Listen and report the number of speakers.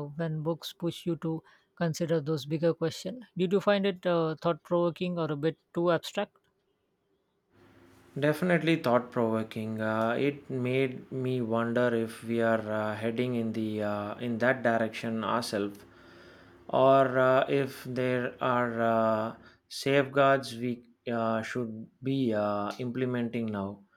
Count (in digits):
2